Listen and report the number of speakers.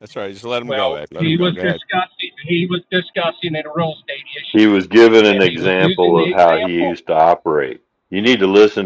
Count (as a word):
three